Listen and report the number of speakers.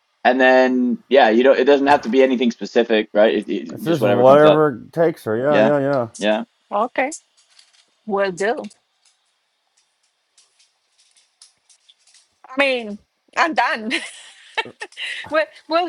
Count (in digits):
3